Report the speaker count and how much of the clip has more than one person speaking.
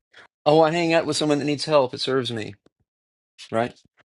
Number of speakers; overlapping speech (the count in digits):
1, no overlap